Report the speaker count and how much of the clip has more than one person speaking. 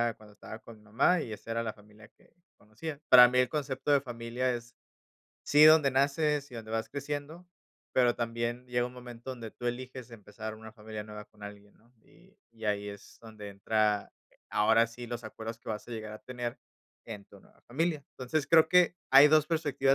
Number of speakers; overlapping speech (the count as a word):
one, no overlap